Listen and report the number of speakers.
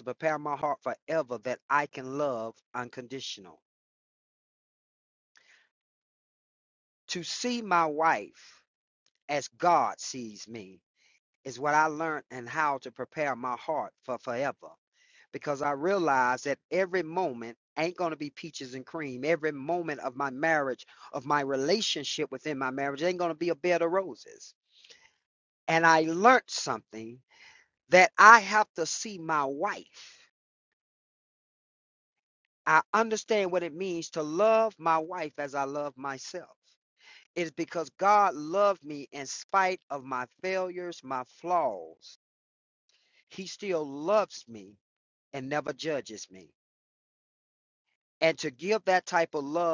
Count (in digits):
1